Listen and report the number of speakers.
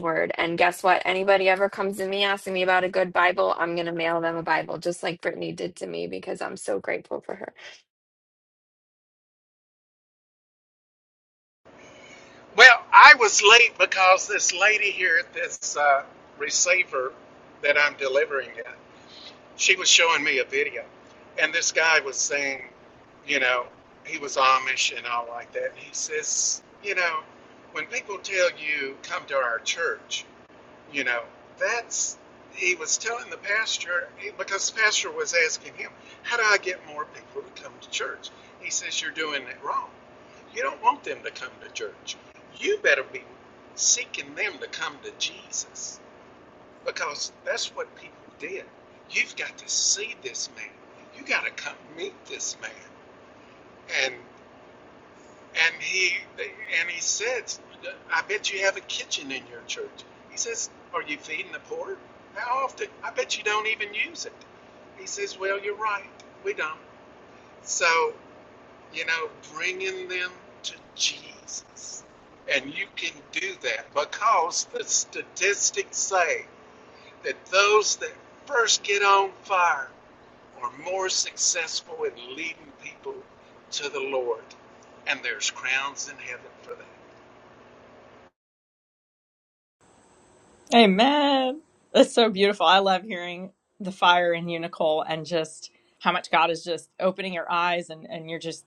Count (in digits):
3